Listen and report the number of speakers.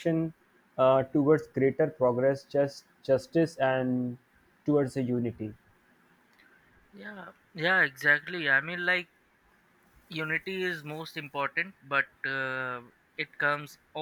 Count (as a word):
two